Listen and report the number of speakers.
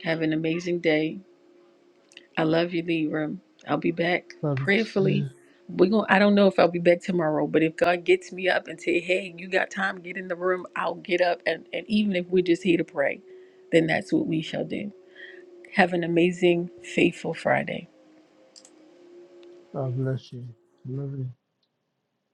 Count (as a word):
two